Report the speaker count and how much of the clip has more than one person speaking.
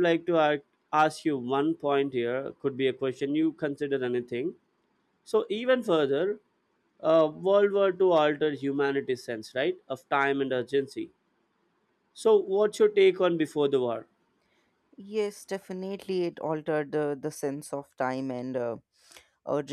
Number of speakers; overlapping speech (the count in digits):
2, no overlap